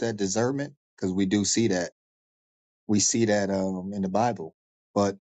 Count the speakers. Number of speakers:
one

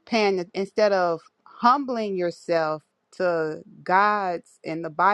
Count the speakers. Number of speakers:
one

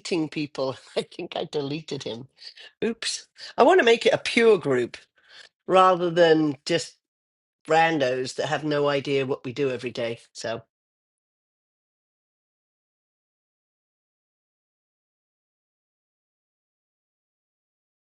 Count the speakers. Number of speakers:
one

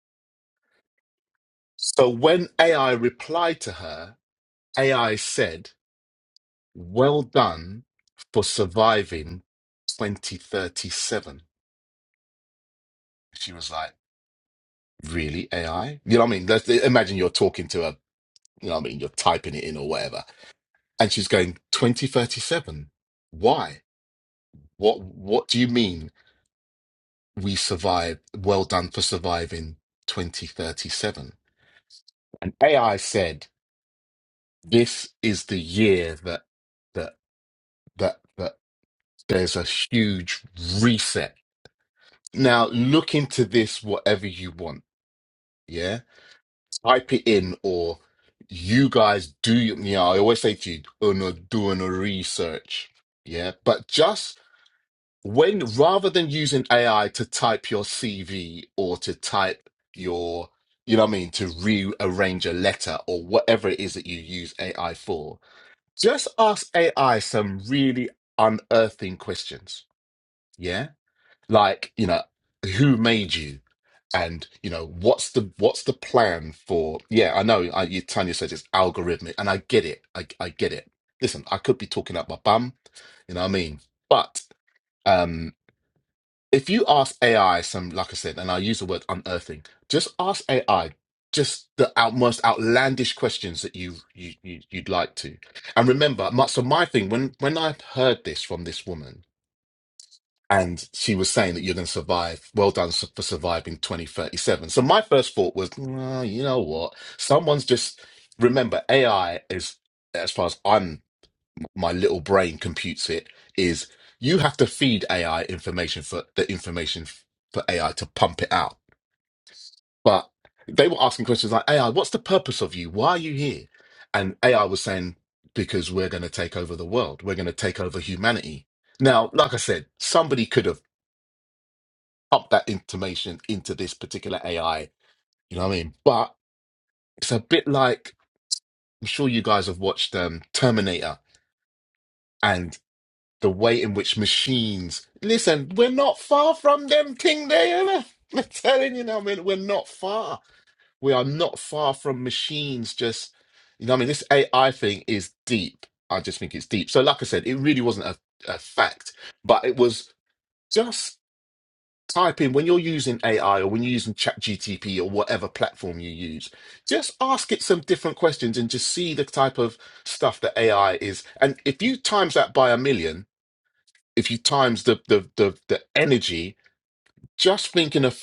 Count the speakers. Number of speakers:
one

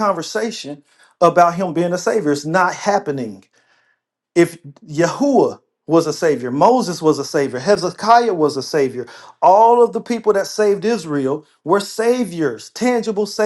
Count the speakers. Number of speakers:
one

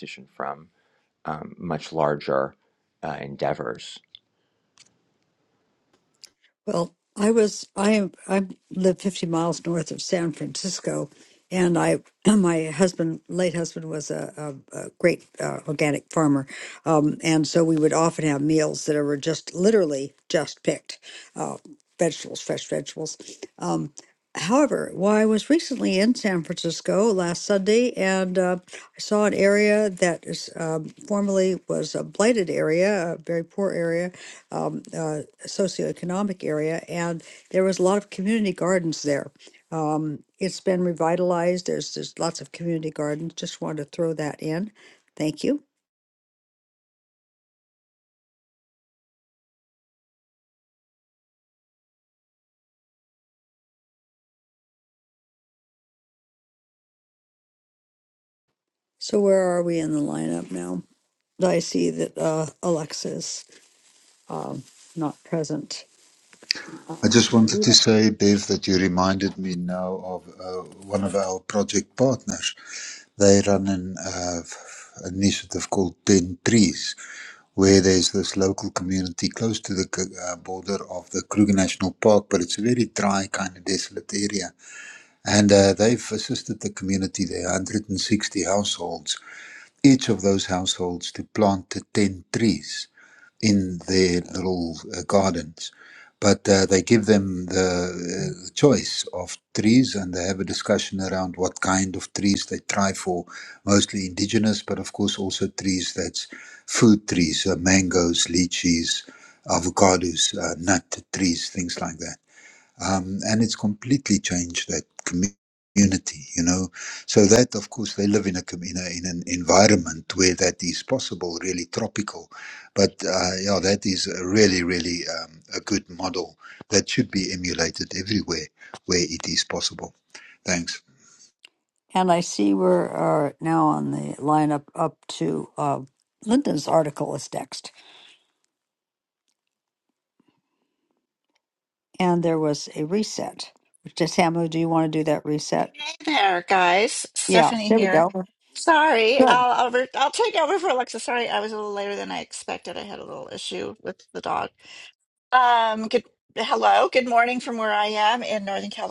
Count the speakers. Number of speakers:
four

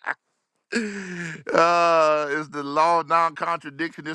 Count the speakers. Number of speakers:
one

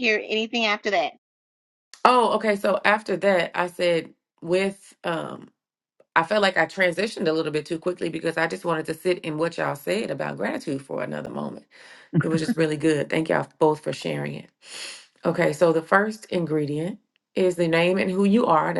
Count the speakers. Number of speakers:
two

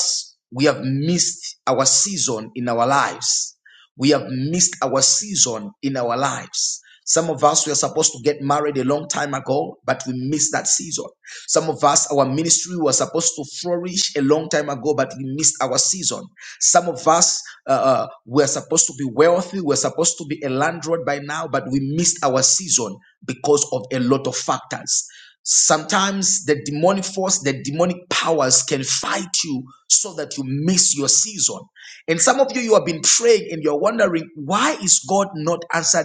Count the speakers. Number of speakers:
one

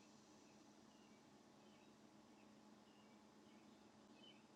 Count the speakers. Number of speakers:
zero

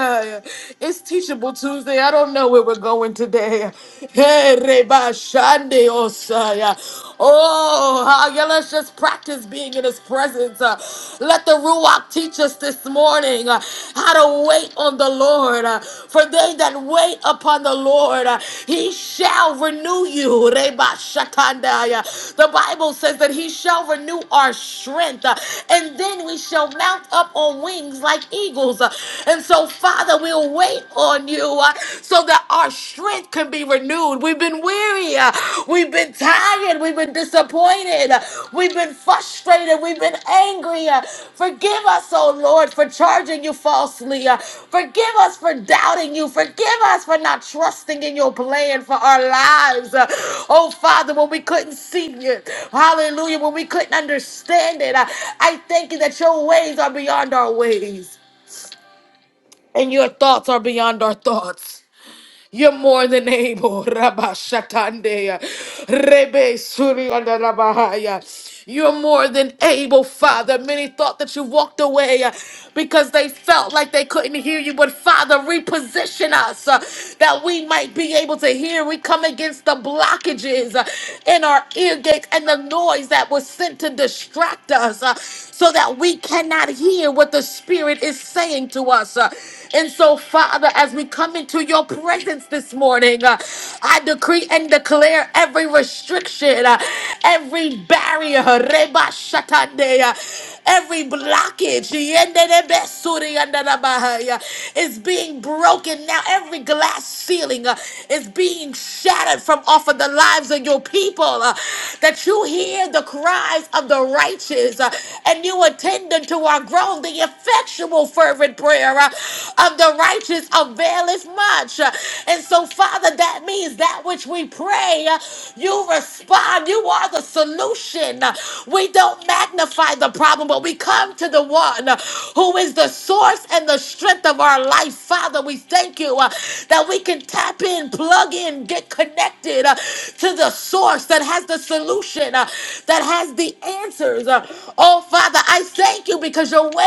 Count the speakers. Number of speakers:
one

